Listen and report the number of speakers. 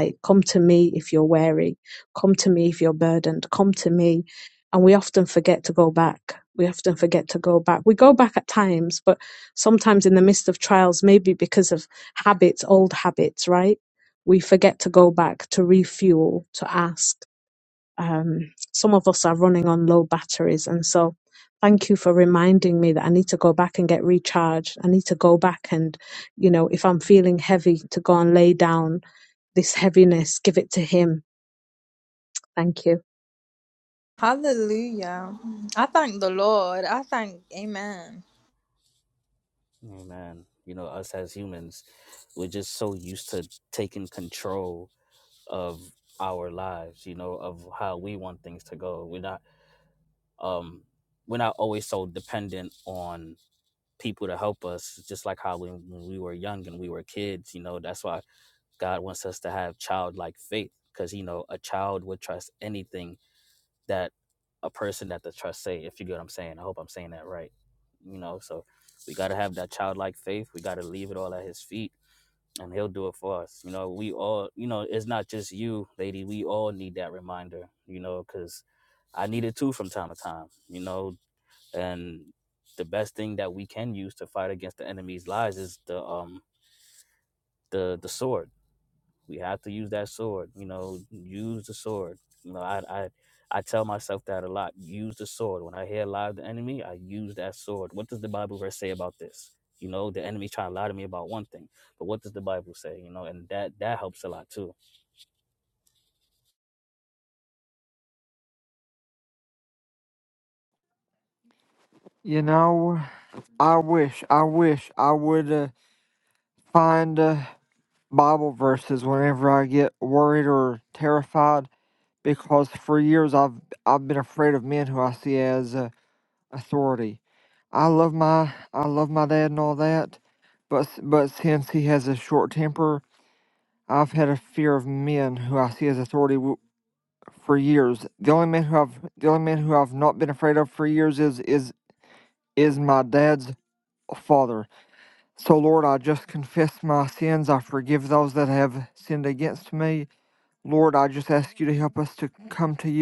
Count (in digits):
4